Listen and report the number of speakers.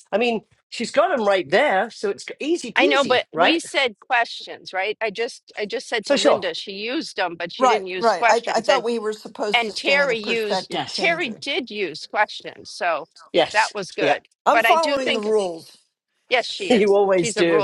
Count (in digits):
3